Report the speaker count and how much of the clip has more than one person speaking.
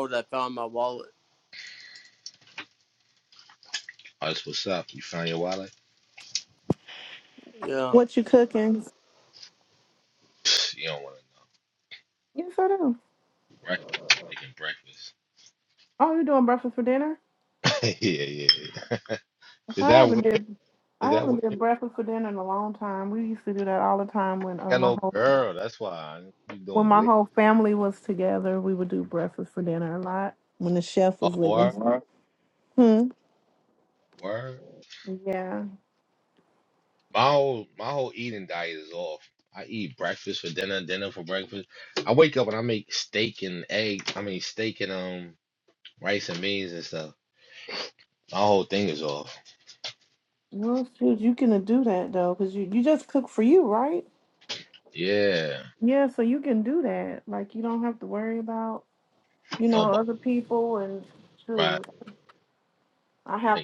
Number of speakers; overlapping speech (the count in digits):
3, about 5%